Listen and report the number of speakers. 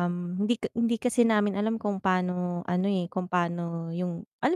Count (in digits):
1